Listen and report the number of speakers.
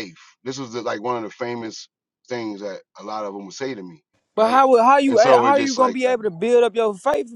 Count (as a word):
two